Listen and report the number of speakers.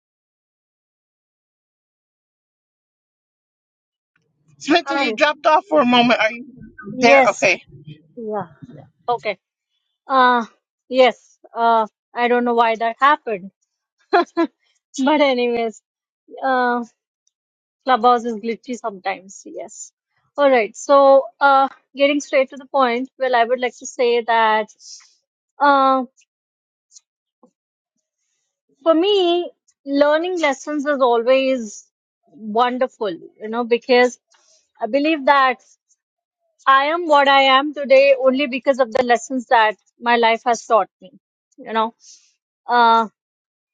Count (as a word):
two